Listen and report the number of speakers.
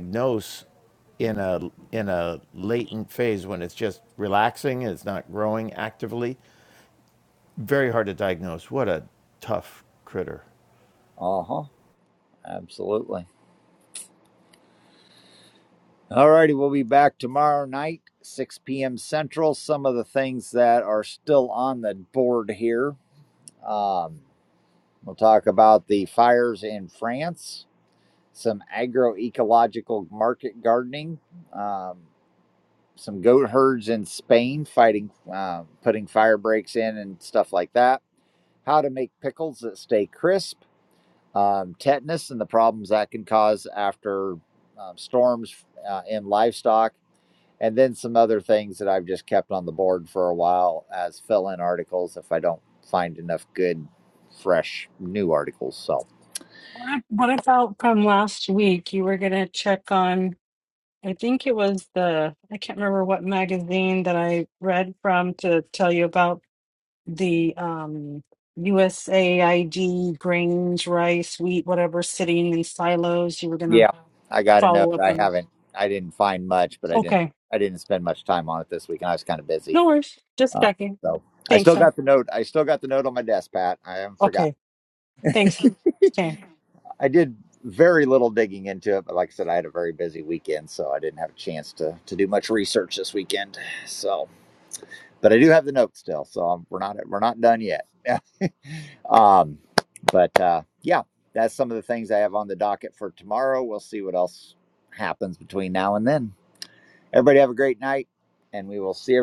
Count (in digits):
3